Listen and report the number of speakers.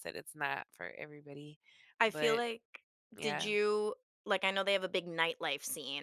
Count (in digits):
2